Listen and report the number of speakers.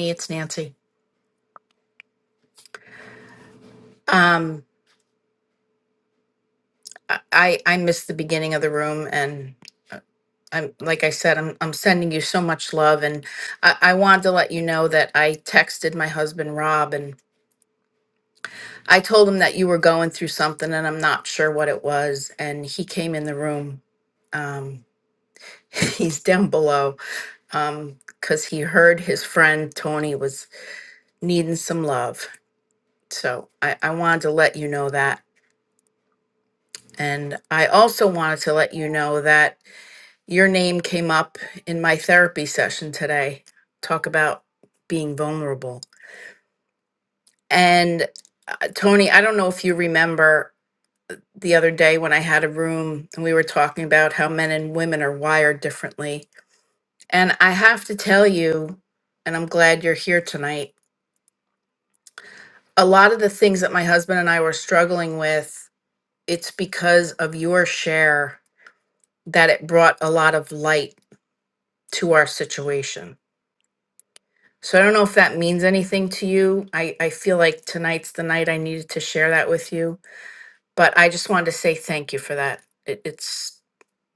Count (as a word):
one